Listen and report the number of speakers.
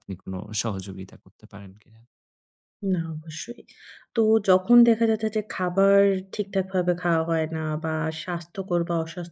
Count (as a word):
two